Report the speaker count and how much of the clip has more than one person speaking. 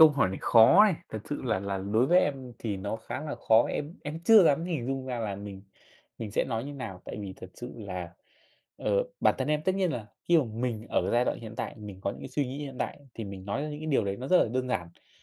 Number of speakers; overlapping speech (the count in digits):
1, no overlap